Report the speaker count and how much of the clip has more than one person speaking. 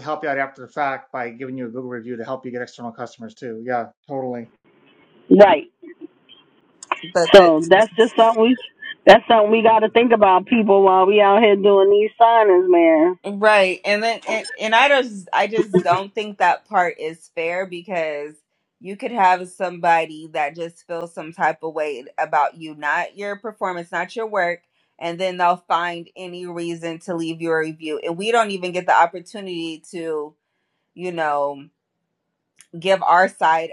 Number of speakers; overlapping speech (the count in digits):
3, about 1%